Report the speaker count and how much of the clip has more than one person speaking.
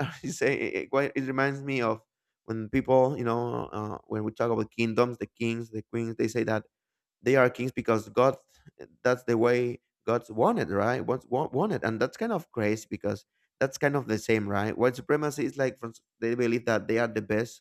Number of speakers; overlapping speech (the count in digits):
1, no overlap